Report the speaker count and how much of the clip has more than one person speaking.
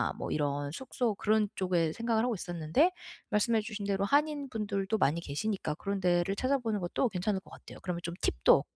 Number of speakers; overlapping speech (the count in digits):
1, no overlap